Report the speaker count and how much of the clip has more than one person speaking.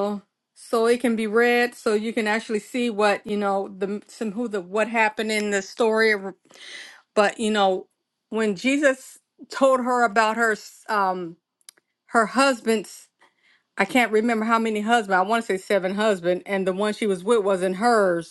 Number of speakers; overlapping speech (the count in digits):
1, no overlap